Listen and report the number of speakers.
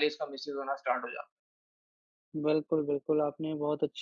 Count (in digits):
2